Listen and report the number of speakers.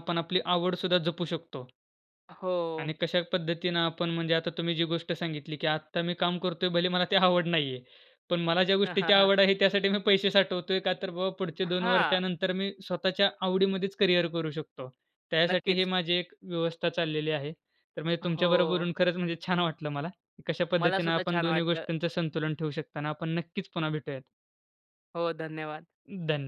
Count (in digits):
2